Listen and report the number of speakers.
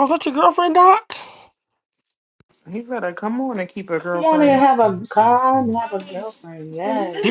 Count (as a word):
three